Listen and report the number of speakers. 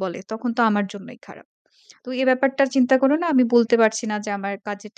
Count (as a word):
one